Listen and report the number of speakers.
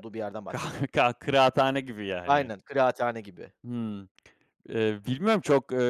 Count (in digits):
2